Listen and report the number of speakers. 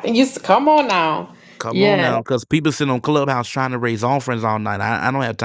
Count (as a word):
two